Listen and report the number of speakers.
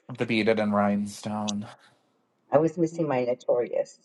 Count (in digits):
2